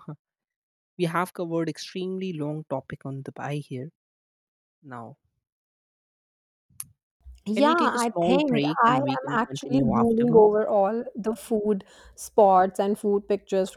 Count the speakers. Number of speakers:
2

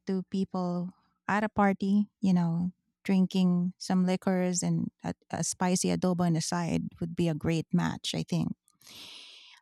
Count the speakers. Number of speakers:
1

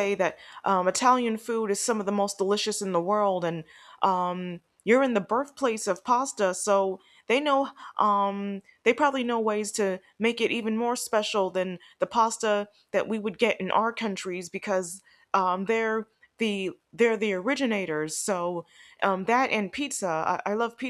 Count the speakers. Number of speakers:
1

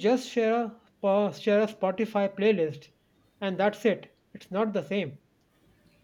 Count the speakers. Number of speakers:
1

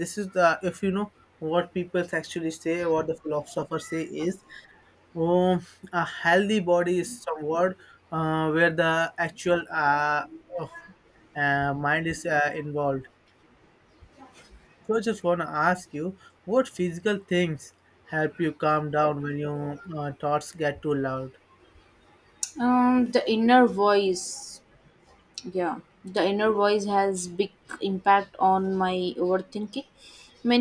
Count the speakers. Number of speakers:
2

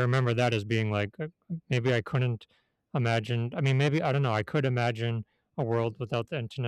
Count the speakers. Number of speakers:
1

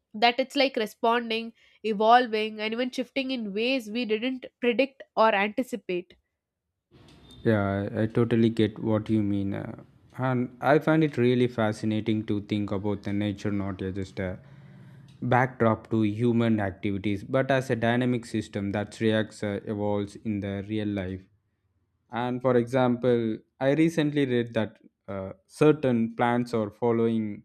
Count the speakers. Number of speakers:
2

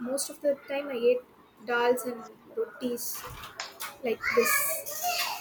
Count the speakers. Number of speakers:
1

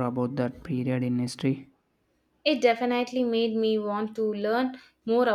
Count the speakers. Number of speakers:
2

